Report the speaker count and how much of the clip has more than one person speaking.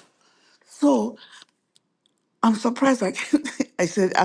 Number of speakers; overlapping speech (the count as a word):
one, no overlap